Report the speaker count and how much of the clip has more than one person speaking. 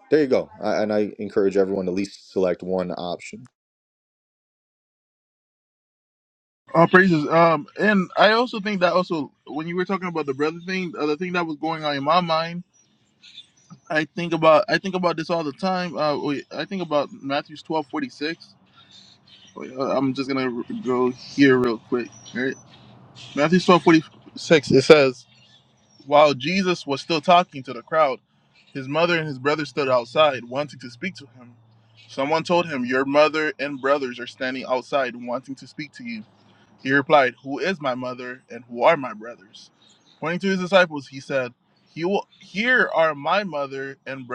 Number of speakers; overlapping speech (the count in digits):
2, no overlap